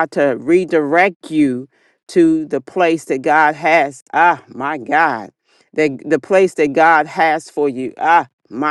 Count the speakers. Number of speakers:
one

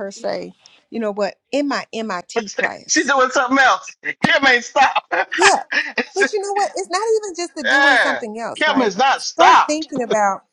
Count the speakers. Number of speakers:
two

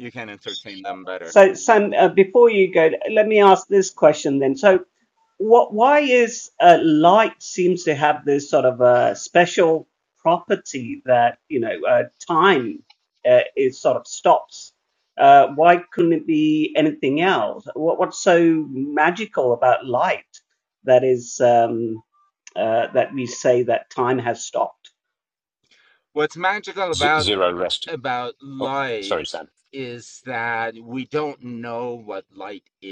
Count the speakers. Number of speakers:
three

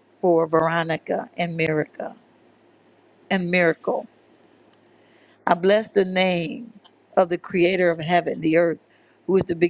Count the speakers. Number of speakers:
one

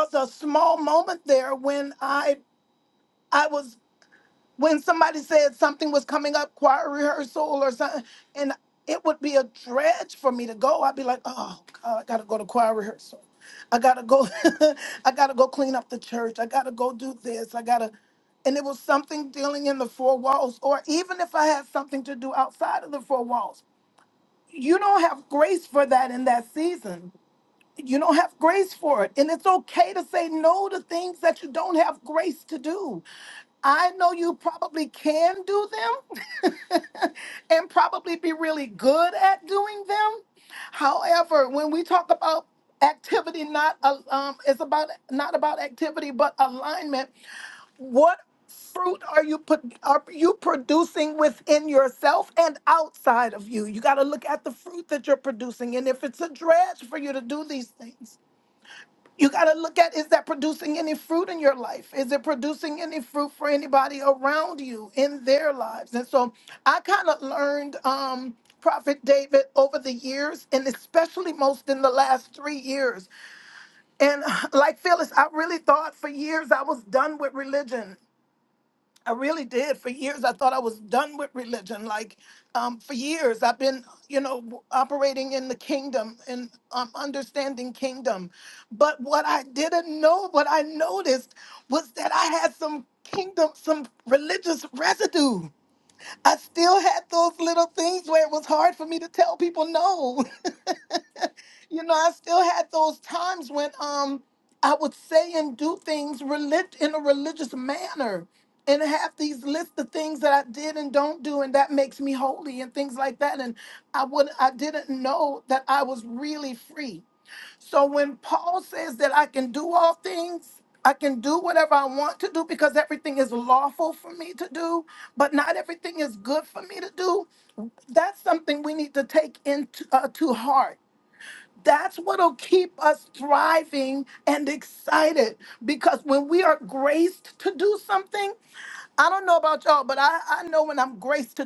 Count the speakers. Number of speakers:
one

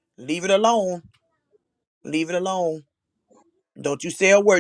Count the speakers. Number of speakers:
one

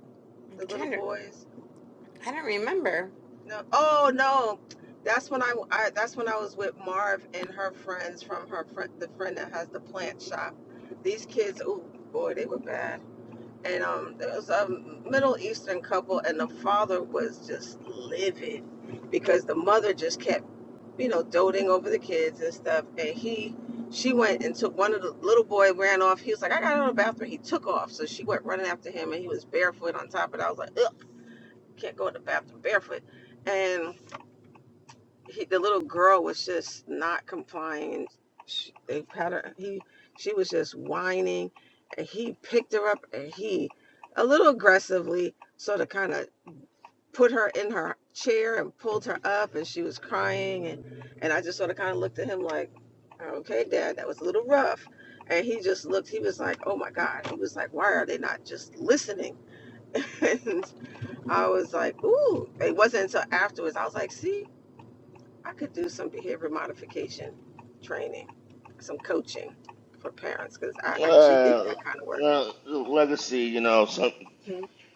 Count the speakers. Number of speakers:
three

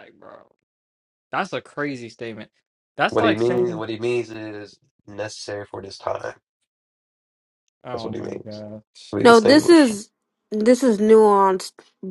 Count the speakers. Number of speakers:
three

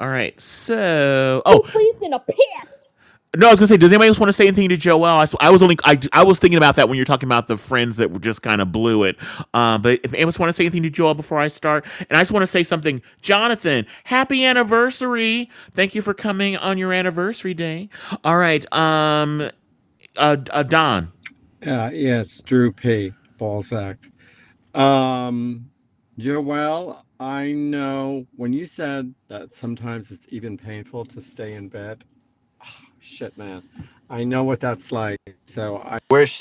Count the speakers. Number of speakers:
three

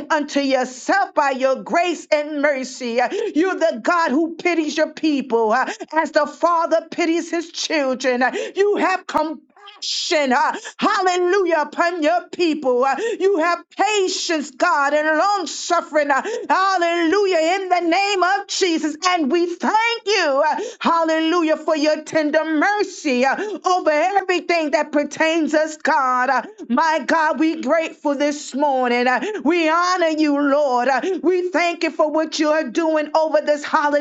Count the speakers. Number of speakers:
one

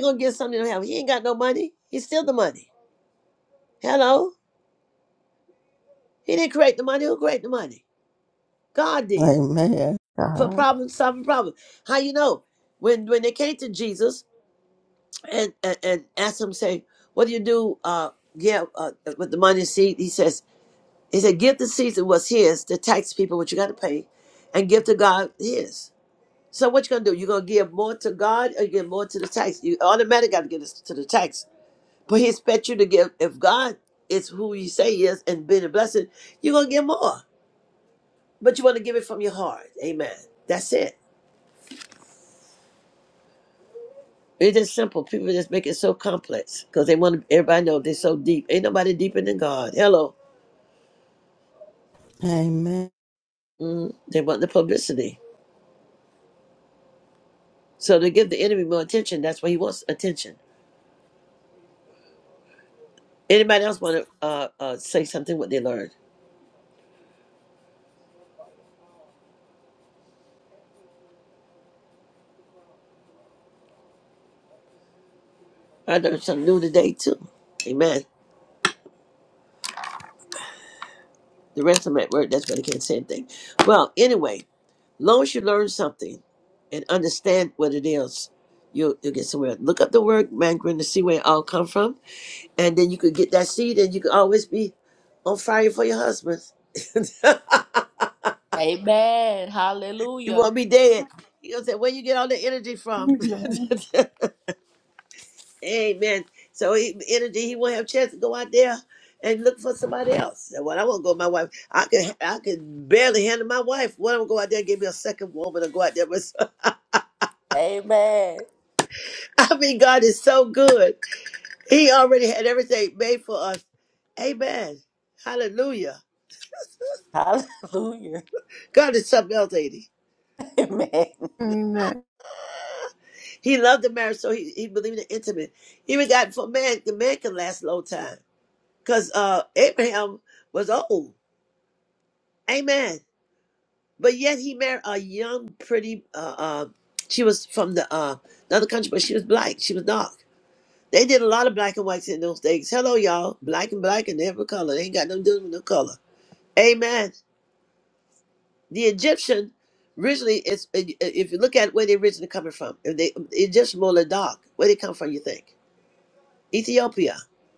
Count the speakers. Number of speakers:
four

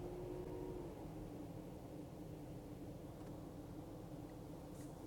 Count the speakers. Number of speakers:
zero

